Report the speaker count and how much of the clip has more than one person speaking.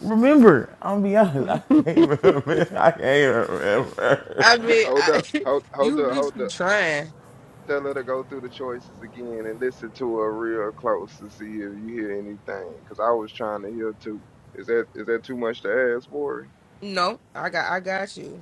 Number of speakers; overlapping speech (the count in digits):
3, about 10%